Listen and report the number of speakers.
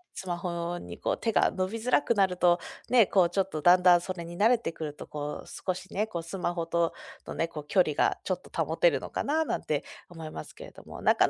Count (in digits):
1